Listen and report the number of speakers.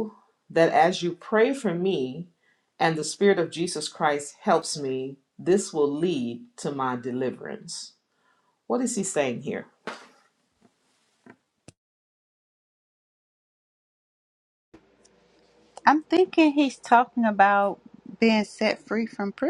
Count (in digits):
2